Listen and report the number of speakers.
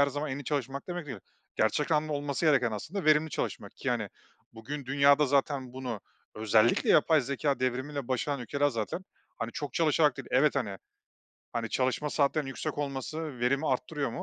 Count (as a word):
one